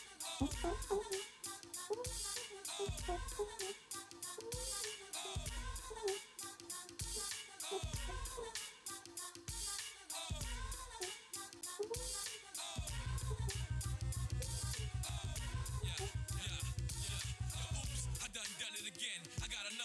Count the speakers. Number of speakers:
zero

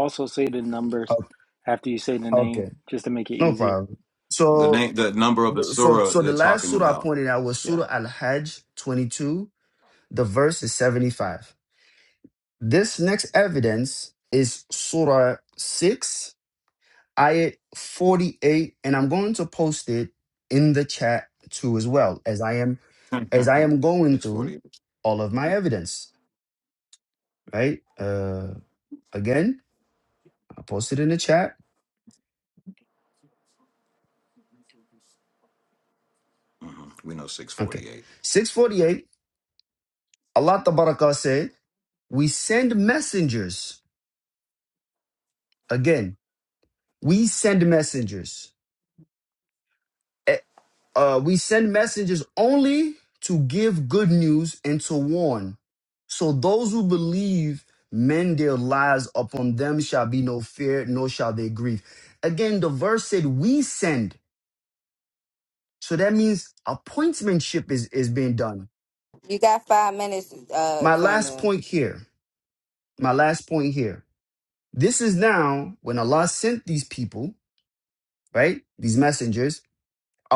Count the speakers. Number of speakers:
four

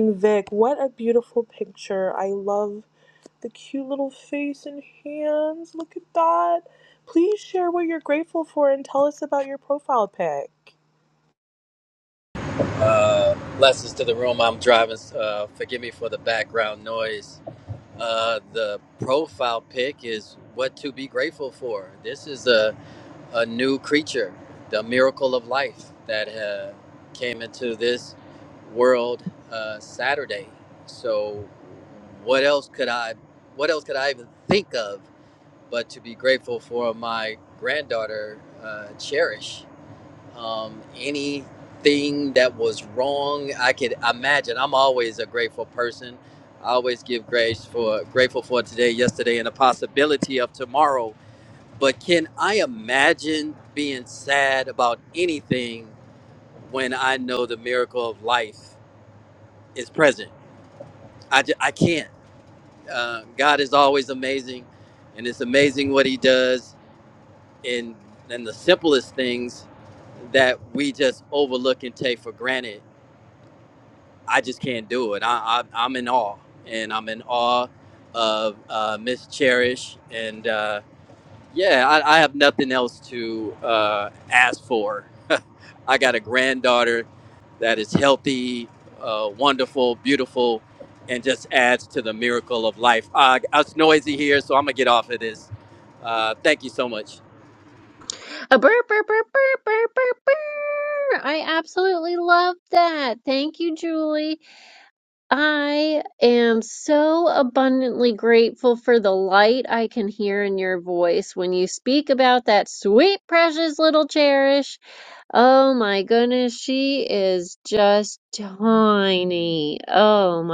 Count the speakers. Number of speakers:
three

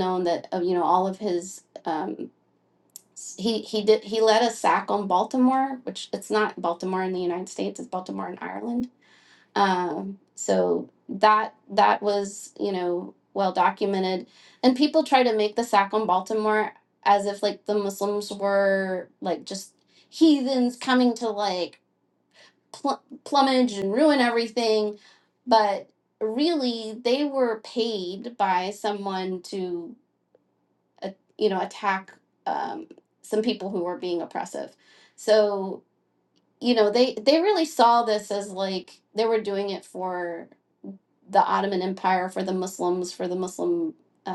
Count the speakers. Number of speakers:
one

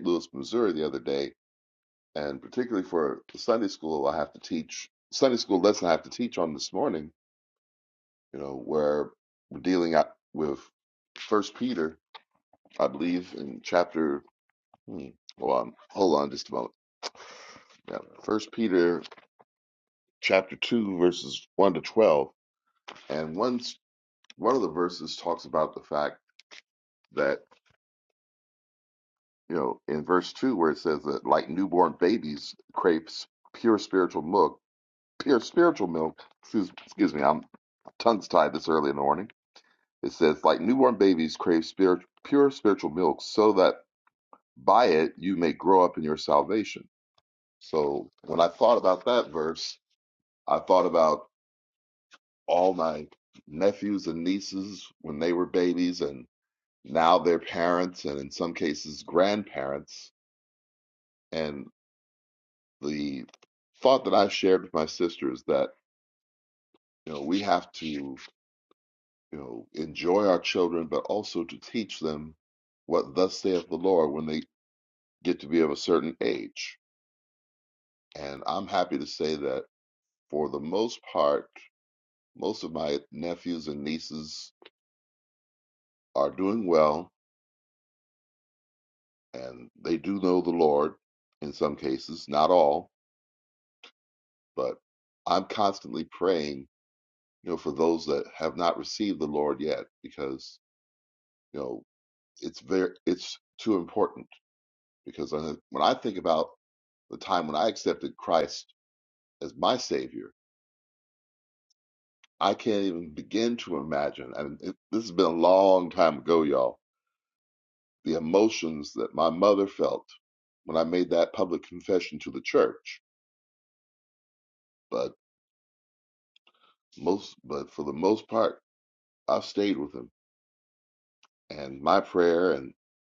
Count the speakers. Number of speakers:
one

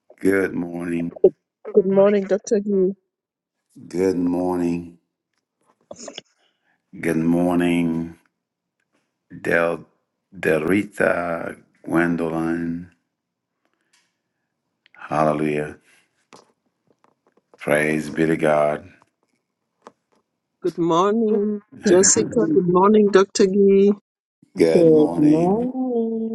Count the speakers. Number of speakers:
three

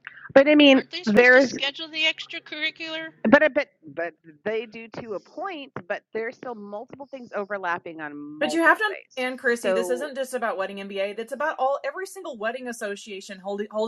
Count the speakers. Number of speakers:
three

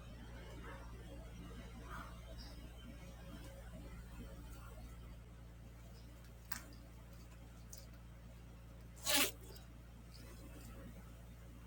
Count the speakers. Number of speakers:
zero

